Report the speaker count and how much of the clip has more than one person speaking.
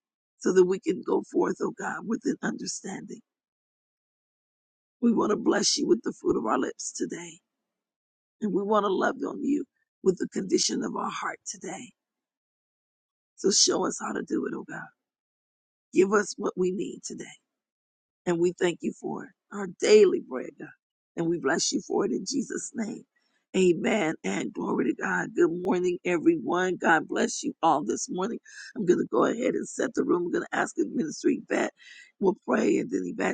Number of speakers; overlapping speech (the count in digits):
1, no overlap